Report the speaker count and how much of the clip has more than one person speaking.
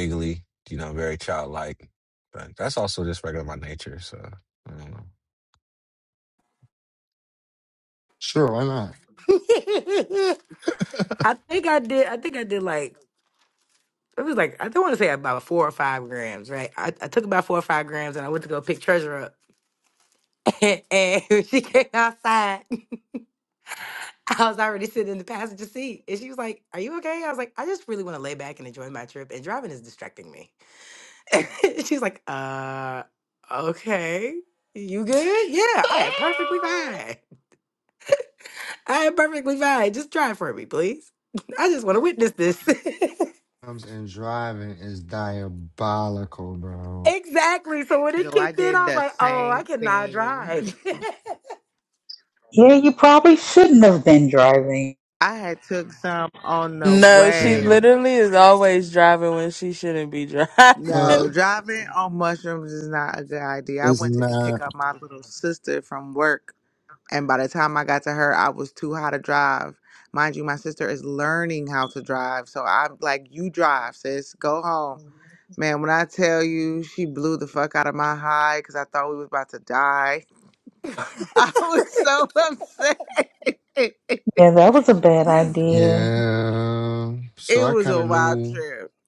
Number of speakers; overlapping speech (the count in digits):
6, about 7%